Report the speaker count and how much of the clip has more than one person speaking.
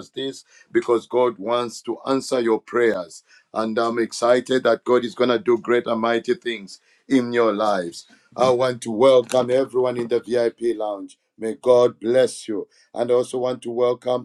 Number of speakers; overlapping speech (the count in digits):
1, no overlap